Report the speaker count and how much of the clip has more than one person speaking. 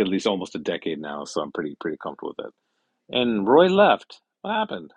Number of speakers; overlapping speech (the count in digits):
1, no overlap